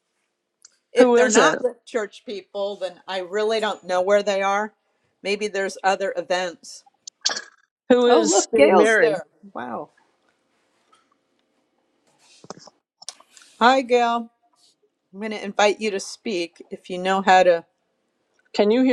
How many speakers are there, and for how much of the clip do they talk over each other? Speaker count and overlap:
2, about 9%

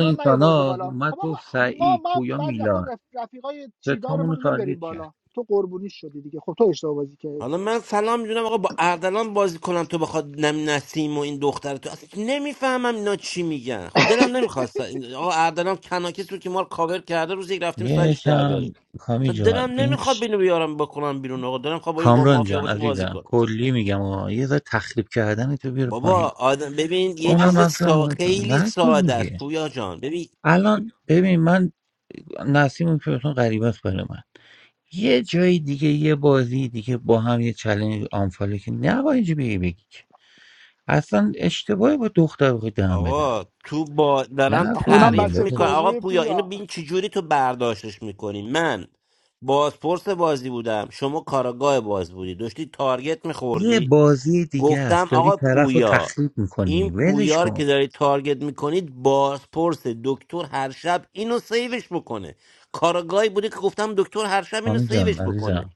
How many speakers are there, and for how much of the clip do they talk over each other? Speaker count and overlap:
3, about 25%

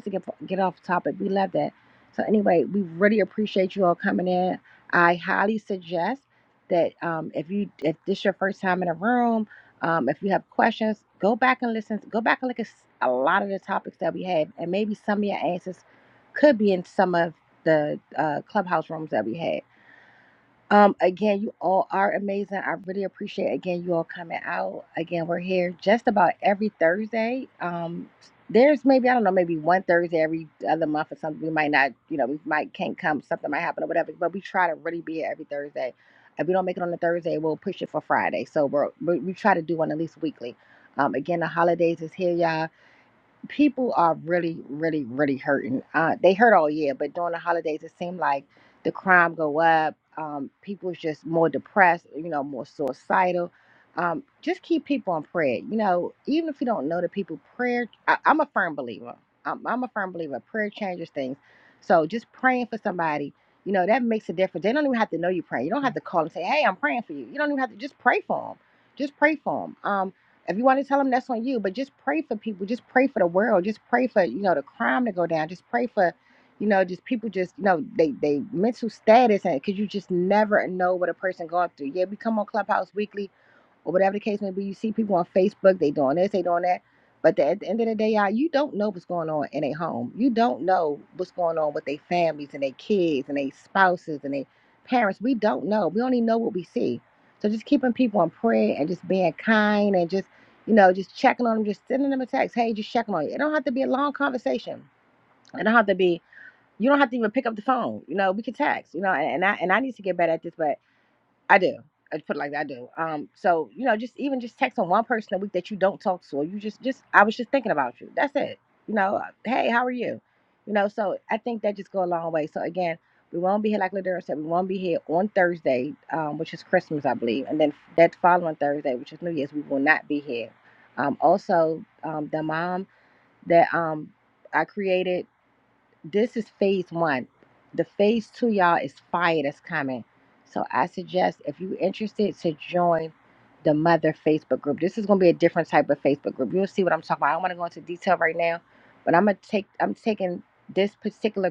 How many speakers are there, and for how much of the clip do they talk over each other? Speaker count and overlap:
1, no overlap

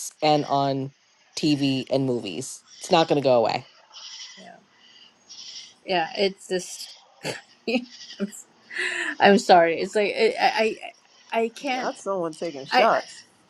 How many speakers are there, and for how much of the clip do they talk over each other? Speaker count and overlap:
3, about 3%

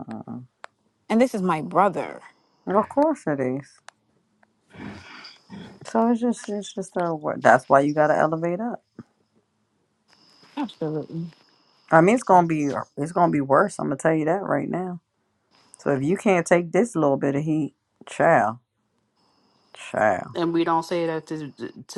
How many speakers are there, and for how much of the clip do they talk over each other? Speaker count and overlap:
3, no overlap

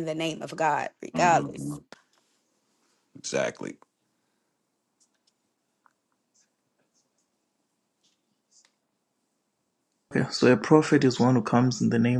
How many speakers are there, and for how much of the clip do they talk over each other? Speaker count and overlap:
3, about 4%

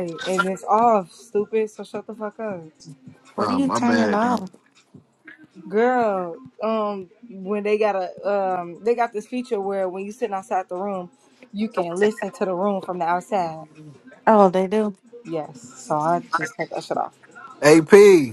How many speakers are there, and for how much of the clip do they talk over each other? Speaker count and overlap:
3, about 5%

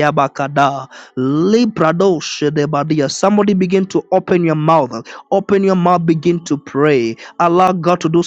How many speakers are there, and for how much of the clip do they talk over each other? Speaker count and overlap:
1, no overlap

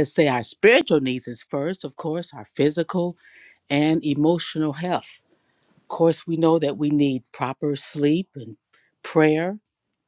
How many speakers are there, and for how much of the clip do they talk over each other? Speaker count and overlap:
1, no overlap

